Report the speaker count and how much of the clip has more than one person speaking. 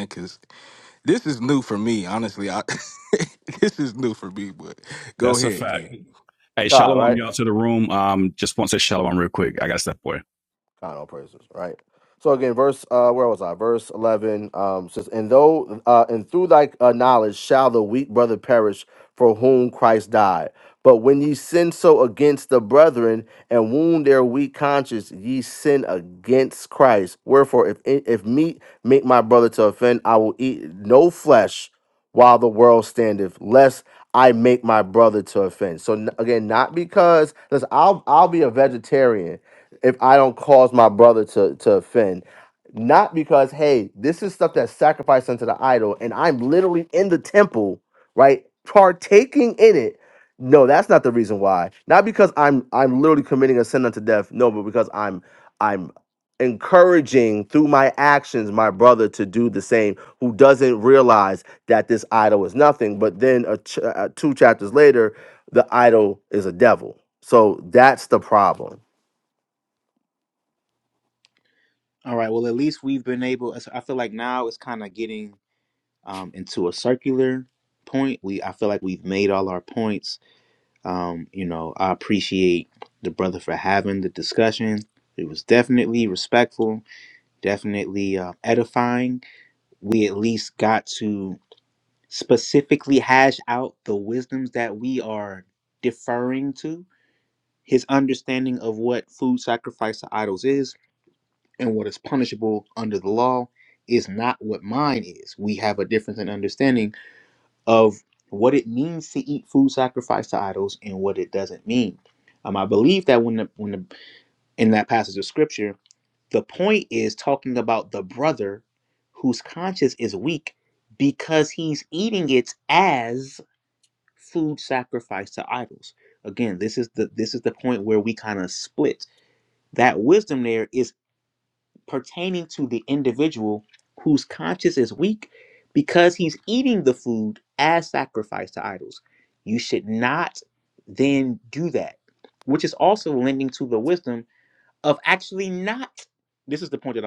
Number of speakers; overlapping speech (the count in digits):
4, about 1%